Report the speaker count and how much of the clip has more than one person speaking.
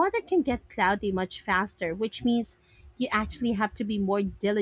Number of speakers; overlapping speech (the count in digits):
1, no overlap